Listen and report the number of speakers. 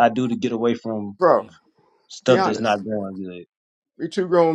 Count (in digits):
2